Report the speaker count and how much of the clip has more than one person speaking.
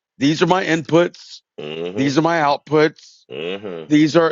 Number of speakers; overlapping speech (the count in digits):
2, about 5%